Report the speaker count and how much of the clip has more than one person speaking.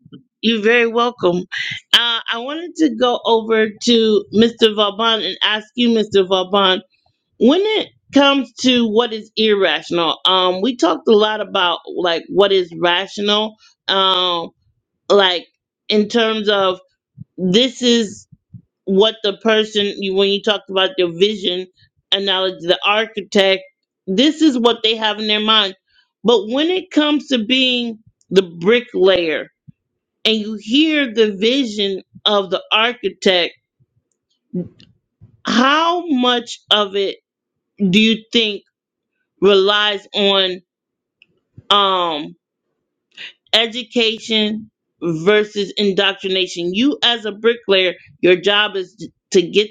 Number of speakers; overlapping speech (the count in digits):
1, no overlap